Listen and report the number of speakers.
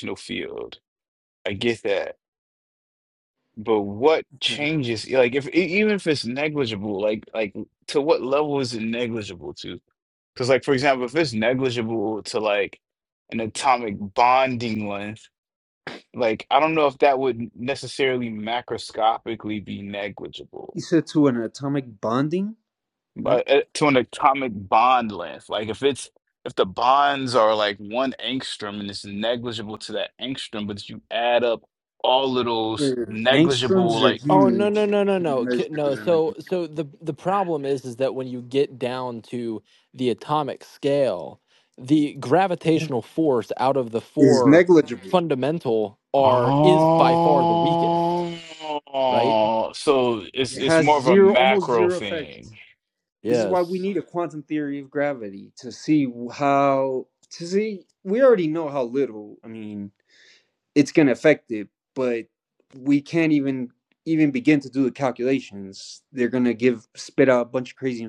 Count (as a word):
three